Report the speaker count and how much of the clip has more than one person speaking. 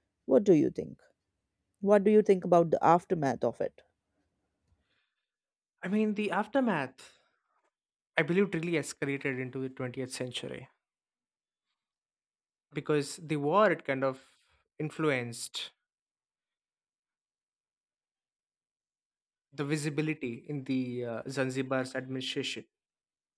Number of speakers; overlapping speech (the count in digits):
2, no overlap